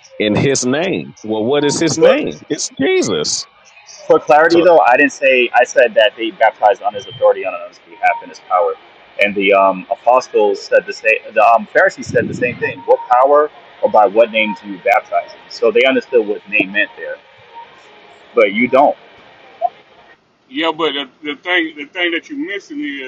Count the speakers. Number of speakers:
3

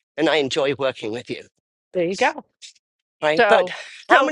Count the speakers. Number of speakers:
2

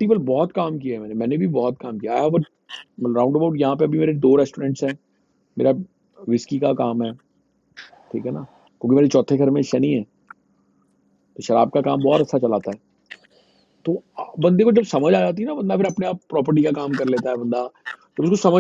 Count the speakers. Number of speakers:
1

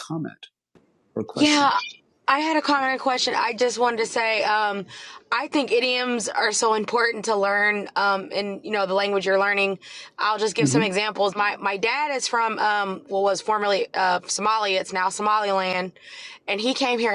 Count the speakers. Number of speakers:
2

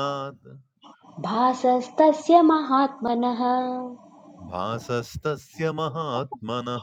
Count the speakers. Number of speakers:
2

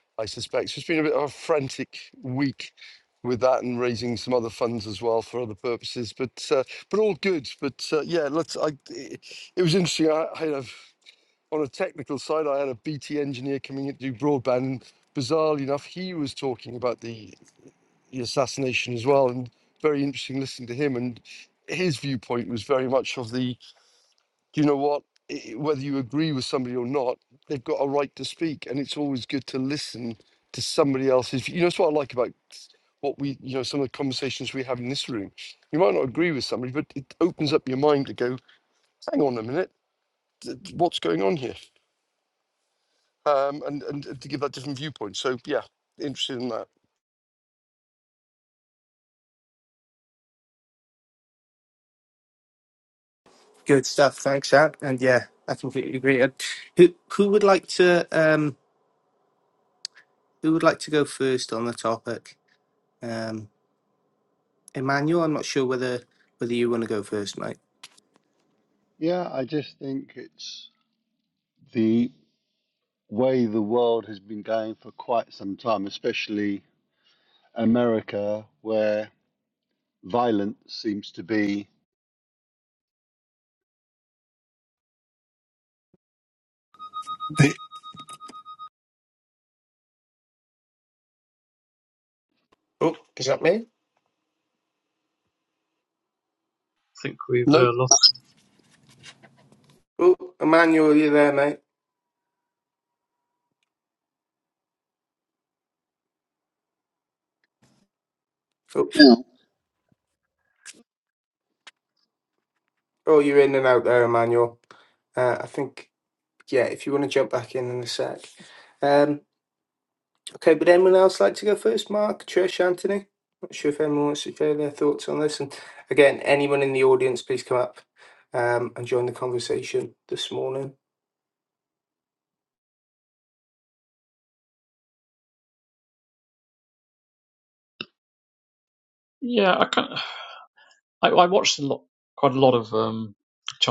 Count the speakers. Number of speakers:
4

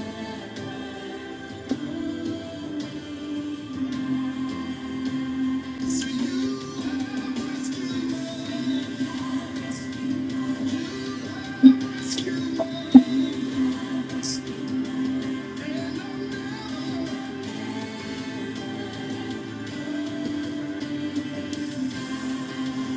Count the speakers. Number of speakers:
0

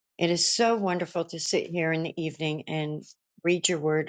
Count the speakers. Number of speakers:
1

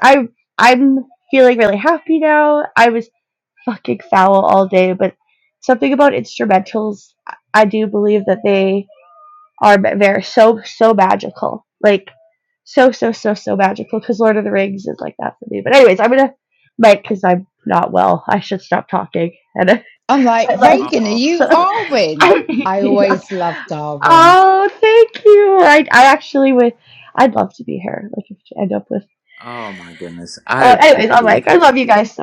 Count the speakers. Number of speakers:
3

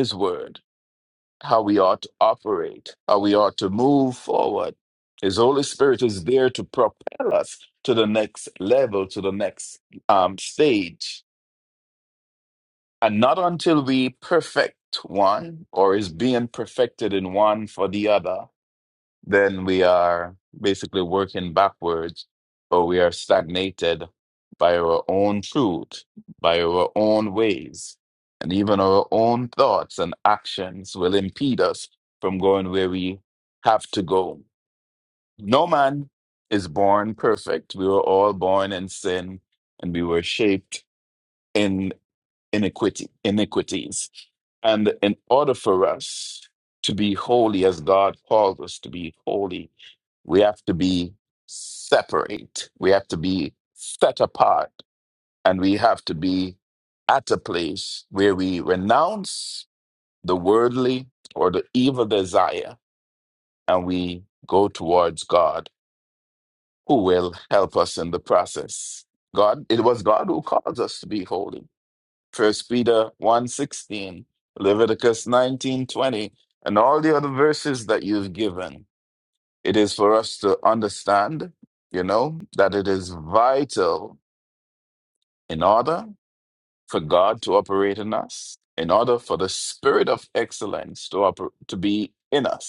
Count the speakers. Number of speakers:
1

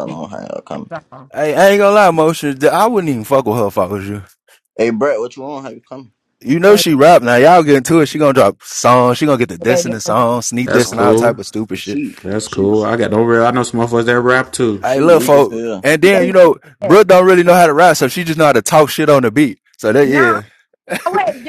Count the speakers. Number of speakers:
4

